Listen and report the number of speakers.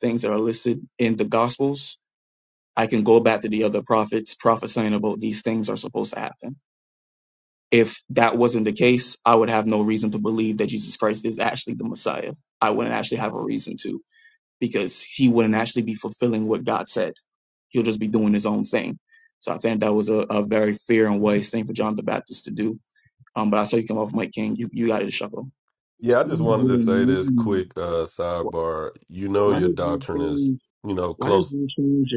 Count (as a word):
two